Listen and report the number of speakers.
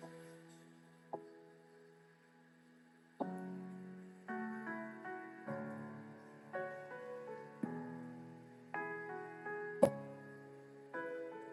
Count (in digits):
0